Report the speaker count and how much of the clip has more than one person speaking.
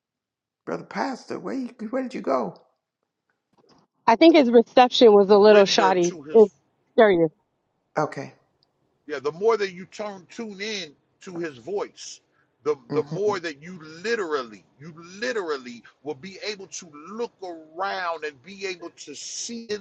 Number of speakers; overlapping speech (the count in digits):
3, about 5%